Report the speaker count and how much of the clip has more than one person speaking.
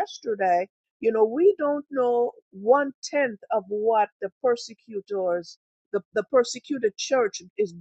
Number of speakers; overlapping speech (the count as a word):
one, no overlap